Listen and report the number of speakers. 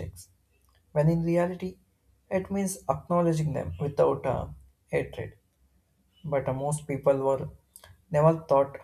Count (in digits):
1